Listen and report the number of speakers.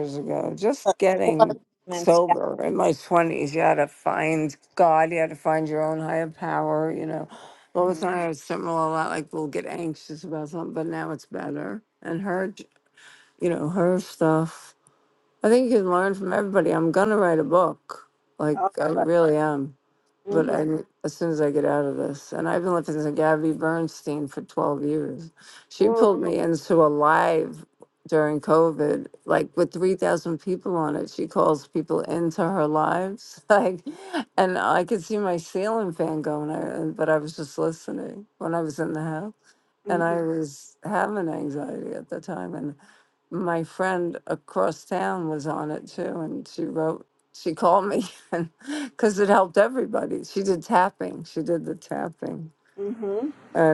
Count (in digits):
2